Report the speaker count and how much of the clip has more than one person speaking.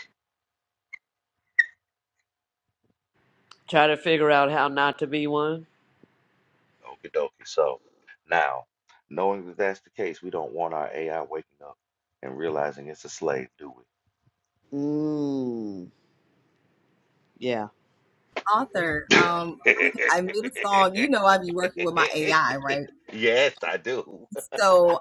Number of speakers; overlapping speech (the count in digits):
3, about 1%